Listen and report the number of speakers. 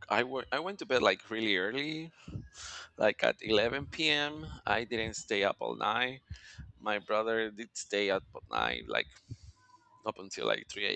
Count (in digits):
1